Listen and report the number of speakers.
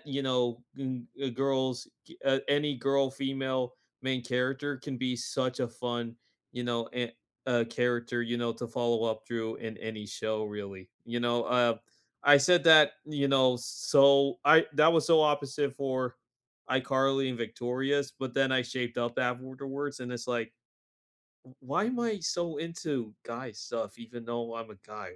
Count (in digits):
1